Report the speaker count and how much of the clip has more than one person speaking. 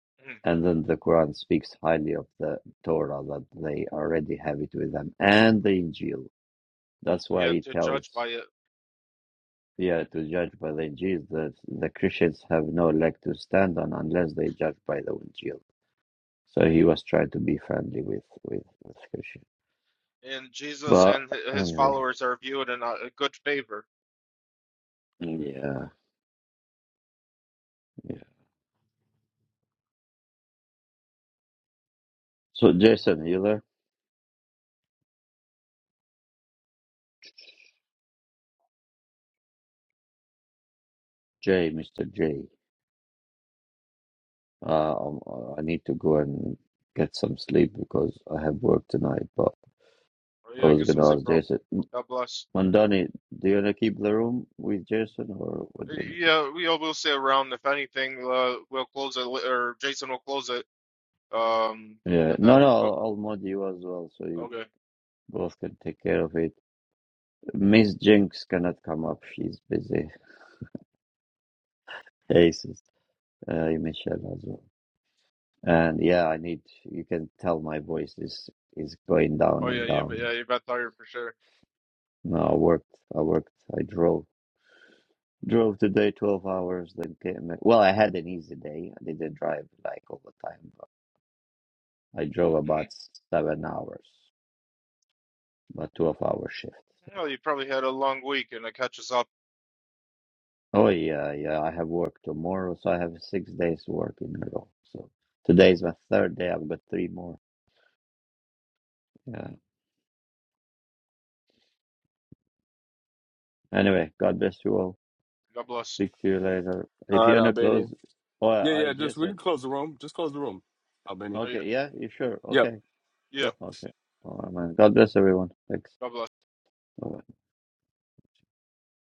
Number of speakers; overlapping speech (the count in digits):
3, about 5%